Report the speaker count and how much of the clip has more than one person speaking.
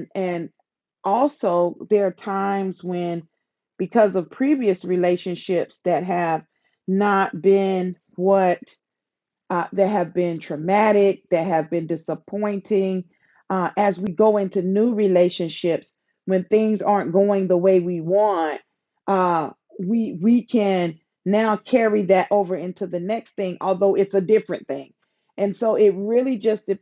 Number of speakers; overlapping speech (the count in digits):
1, no overlap